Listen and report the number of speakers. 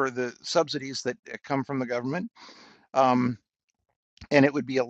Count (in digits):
1